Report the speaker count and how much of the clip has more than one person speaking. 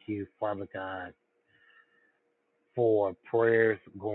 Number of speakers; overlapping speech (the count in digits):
1, no overlap